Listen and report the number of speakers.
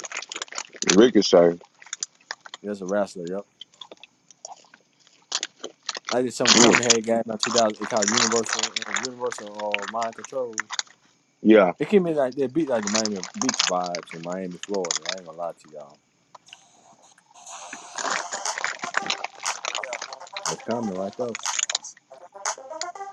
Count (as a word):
two